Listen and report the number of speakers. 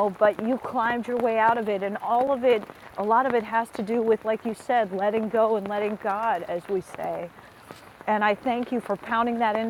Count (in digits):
1